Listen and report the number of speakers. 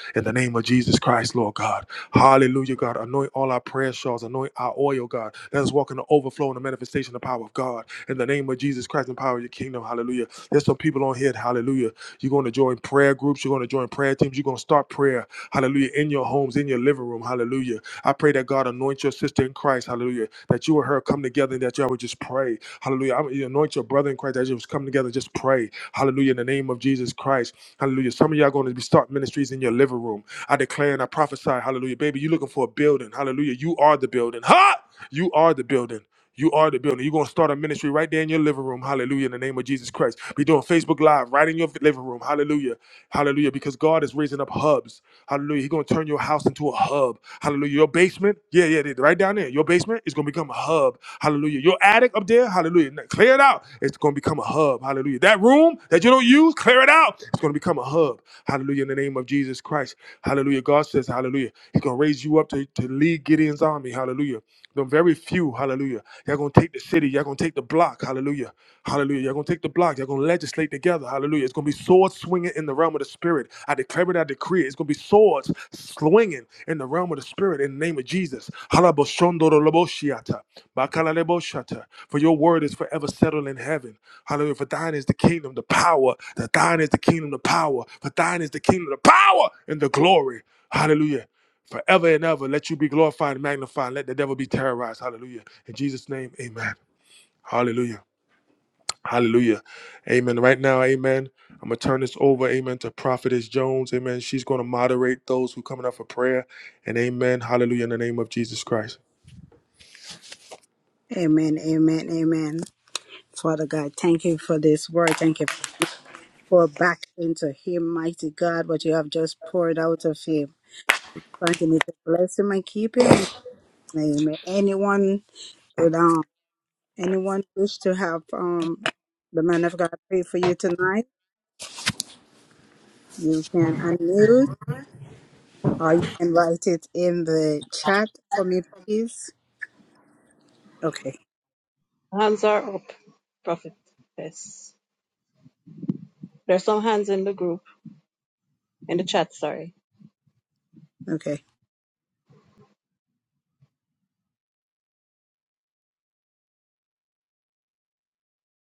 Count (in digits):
3